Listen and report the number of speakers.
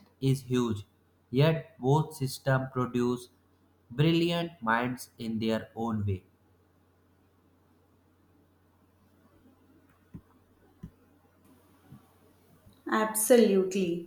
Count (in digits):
2